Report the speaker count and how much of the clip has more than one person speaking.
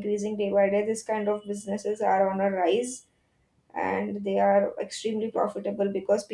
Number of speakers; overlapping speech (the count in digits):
1, no overlap